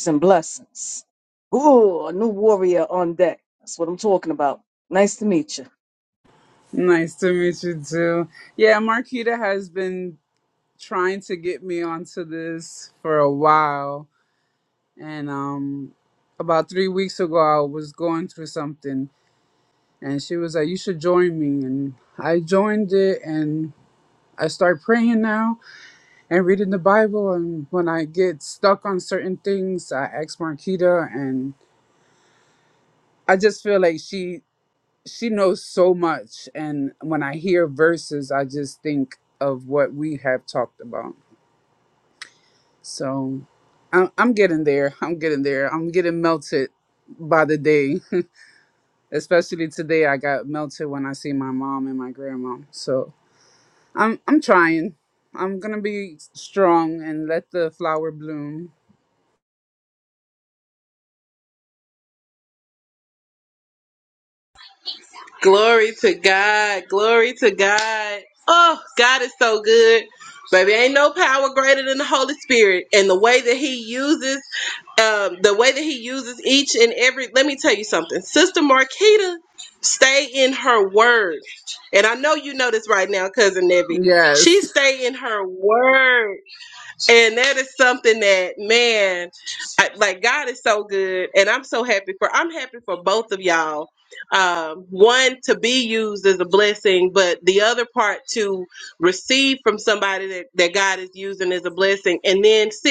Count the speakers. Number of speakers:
3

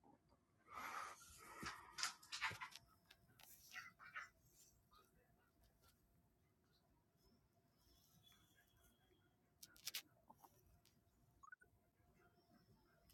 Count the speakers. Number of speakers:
0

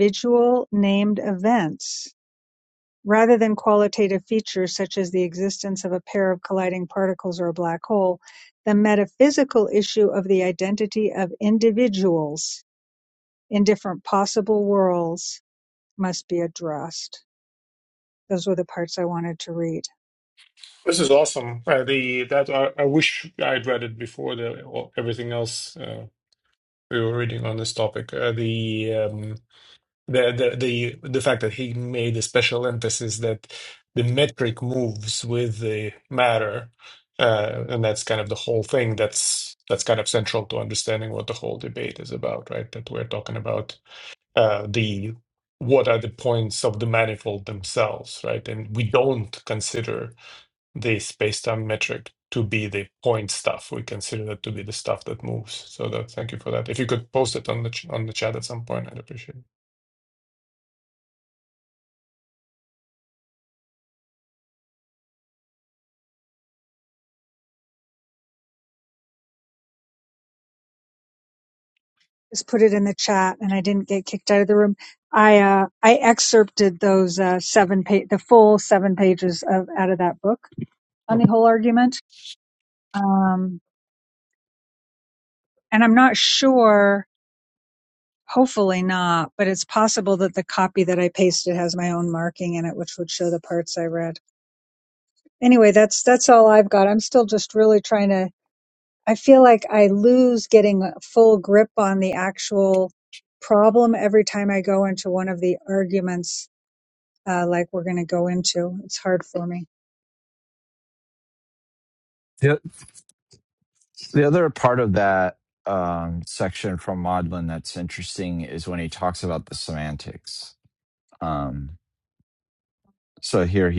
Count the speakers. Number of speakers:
3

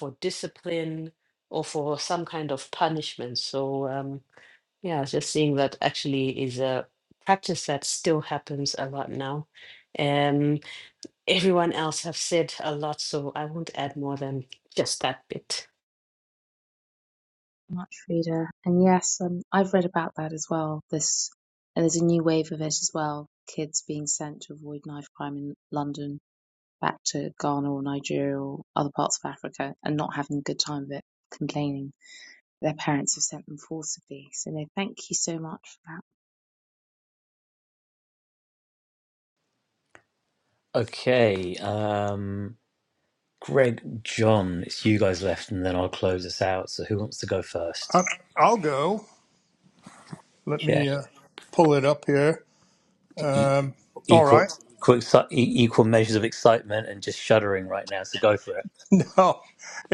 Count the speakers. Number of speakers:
4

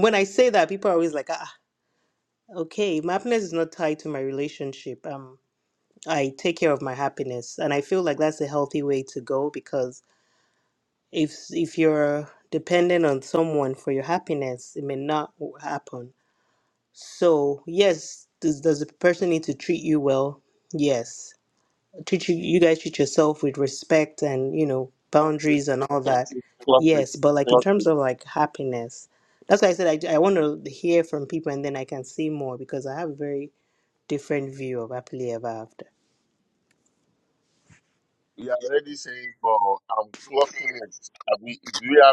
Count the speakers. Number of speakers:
2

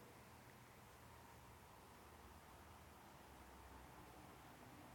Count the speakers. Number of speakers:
0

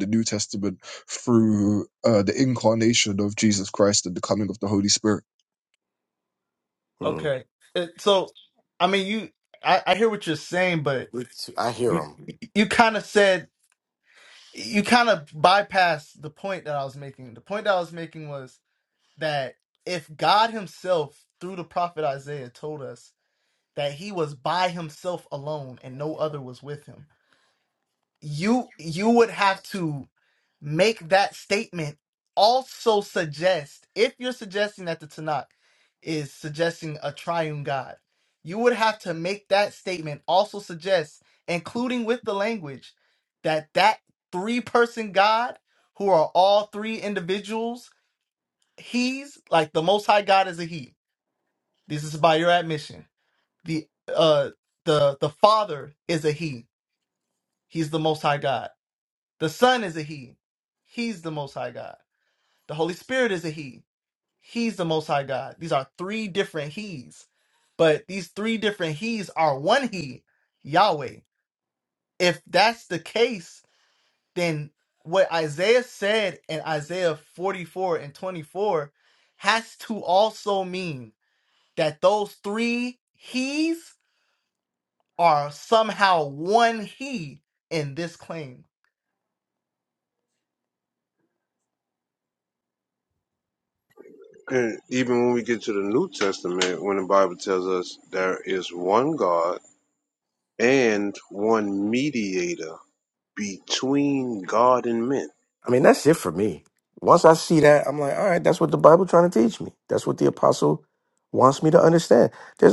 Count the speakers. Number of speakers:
4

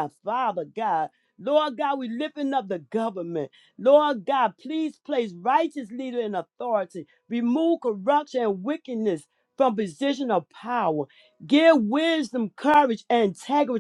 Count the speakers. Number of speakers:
1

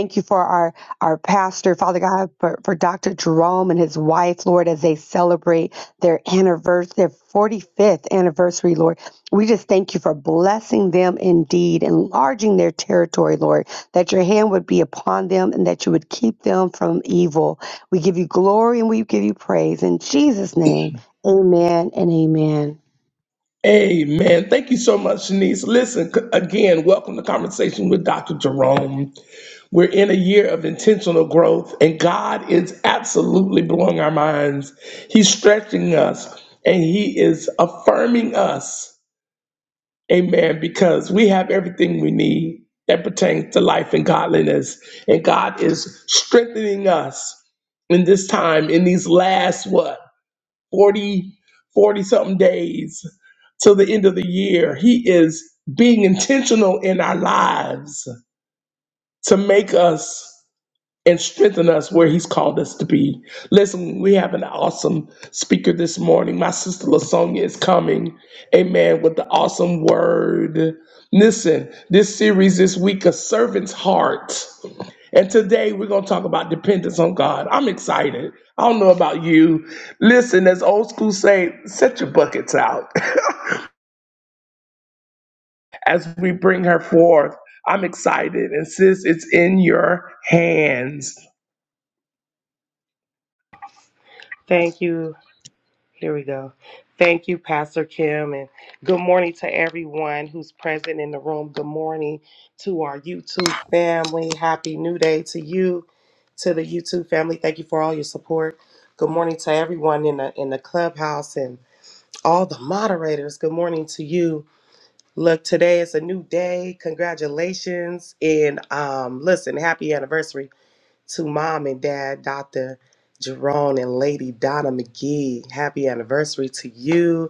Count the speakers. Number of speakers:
3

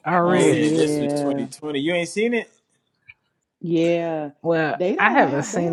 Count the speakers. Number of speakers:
3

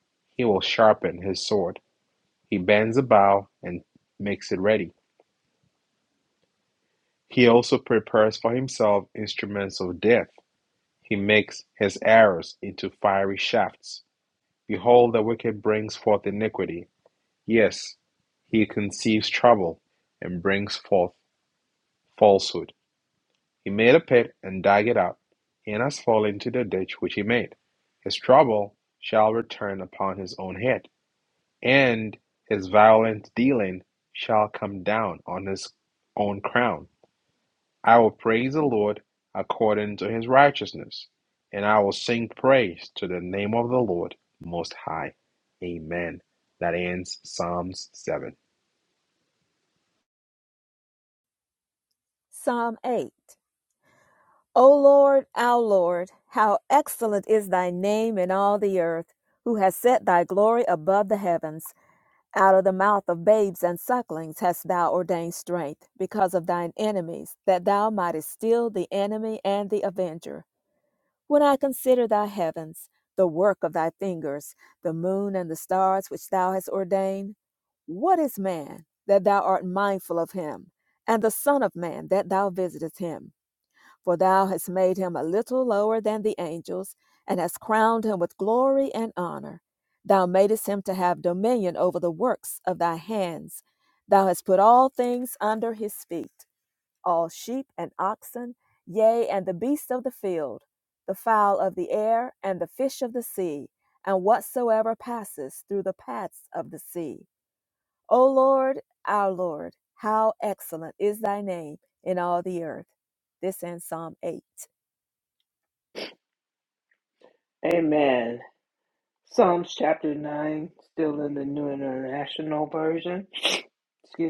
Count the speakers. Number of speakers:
3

